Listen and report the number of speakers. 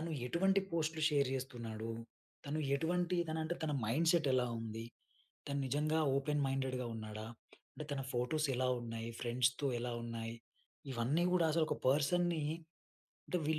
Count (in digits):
1